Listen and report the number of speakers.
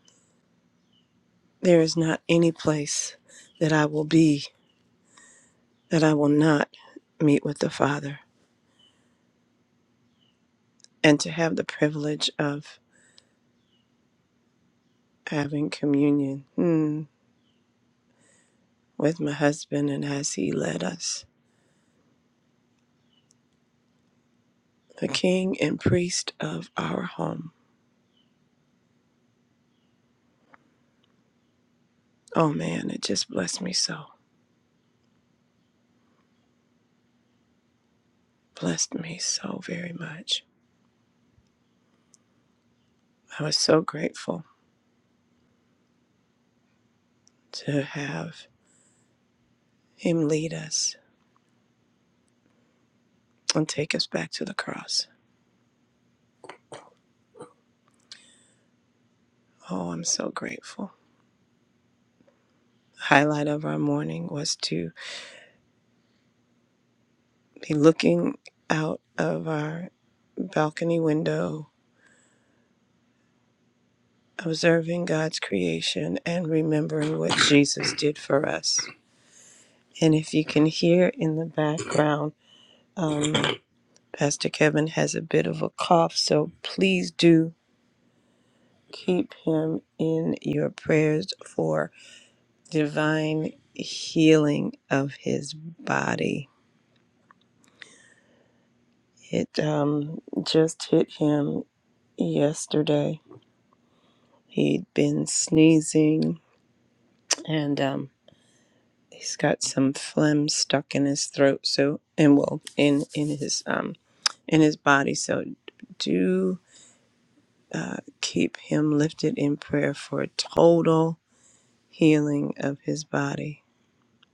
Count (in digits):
1